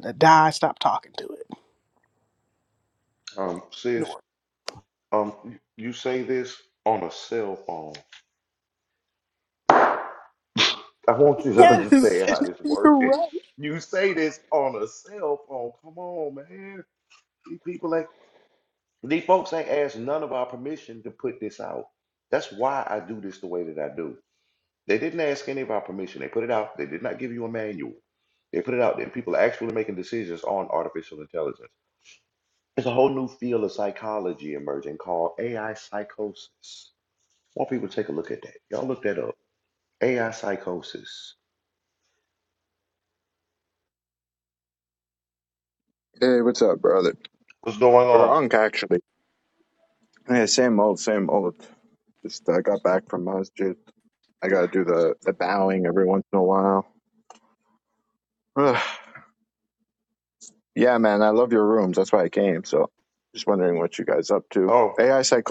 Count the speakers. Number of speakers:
three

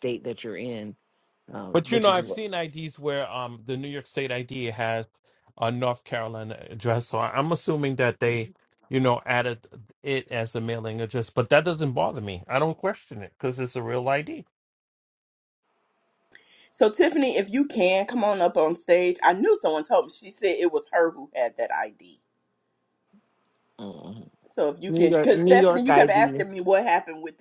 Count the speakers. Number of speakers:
three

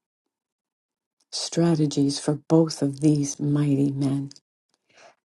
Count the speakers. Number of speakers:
one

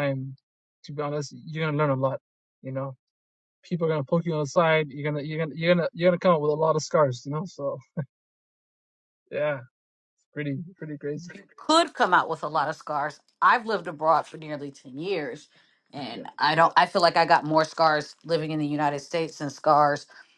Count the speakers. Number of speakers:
two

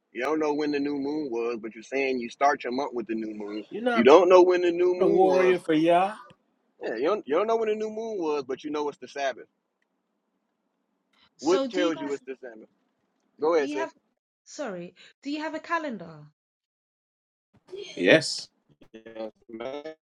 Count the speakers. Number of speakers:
three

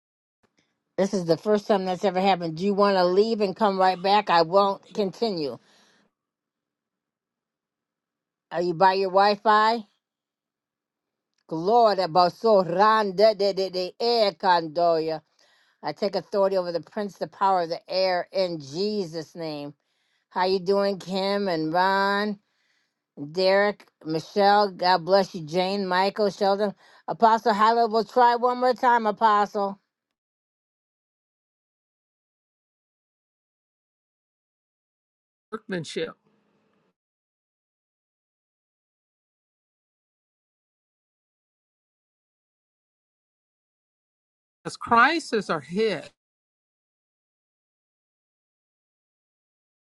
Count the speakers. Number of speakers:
two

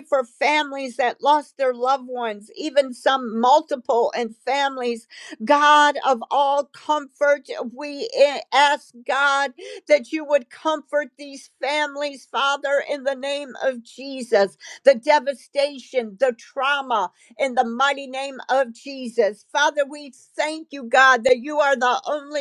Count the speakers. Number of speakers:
one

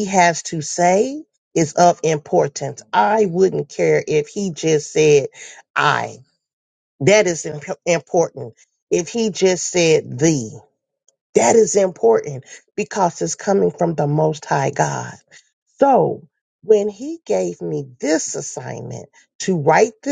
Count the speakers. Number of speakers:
one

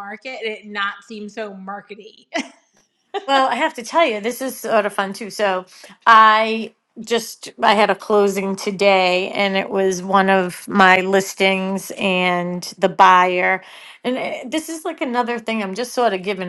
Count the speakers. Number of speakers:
two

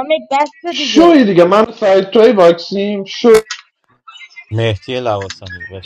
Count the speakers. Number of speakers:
three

